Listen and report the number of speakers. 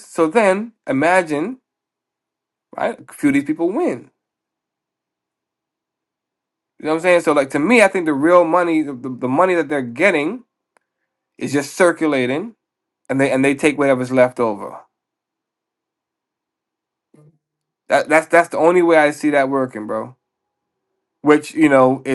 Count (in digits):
1